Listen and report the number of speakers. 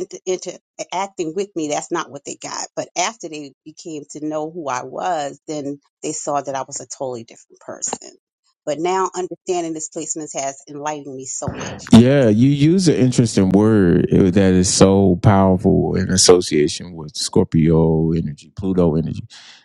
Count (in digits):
2